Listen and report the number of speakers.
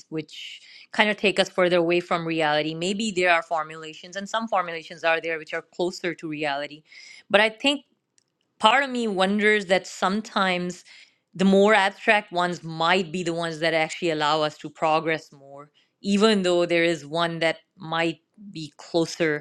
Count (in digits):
1